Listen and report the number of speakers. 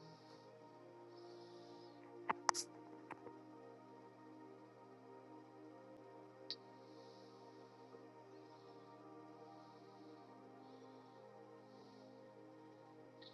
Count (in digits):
0